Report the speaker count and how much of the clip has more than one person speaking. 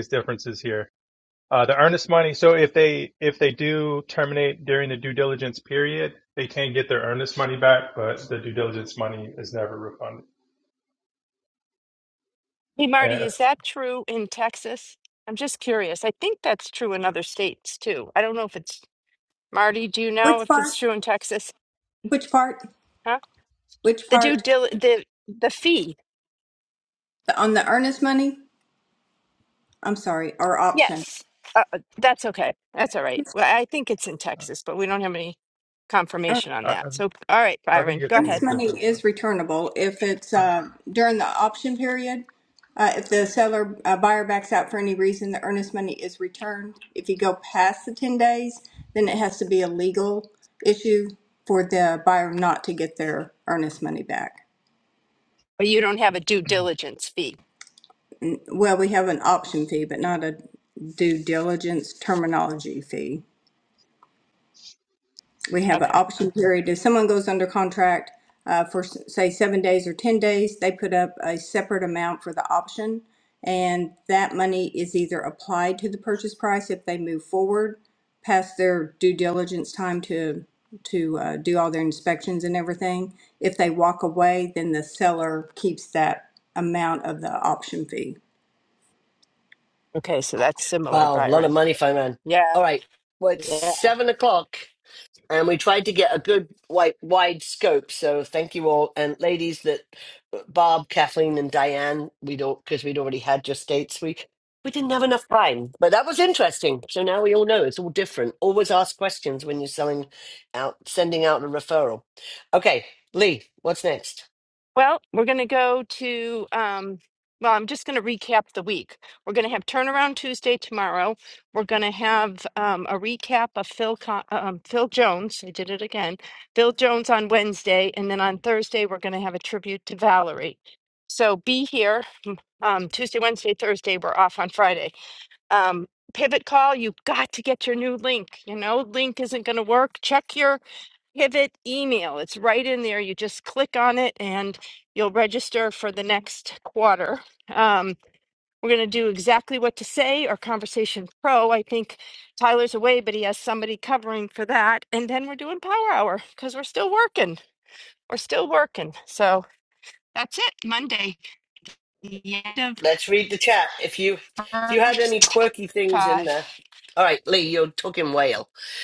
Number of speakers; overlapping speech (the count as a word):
four, about 3%